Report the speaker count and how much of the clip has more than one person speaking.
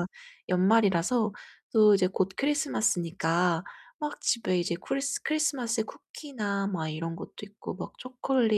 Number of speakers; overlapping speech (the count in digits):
1, no overlap